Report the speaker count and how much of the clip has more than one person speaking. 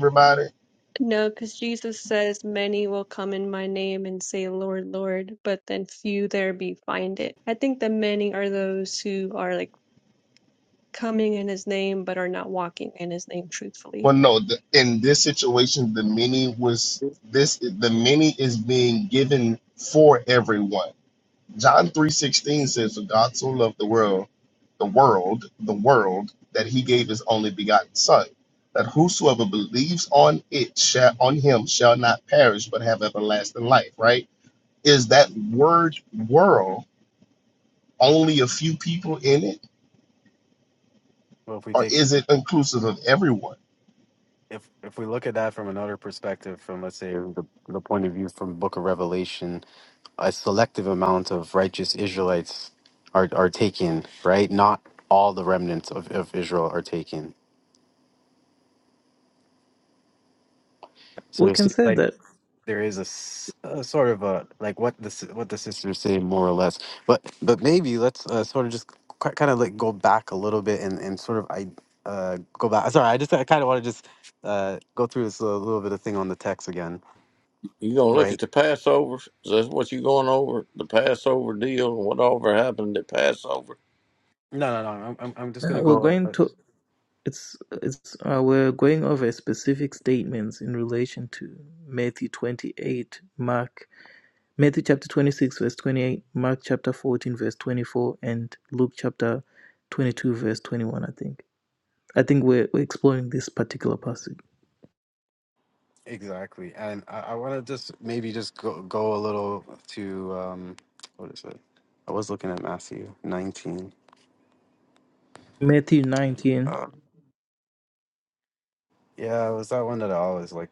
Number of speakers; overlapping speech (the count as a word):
five, about 2%